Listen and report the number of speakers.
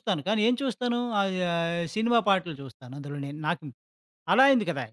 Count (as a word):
one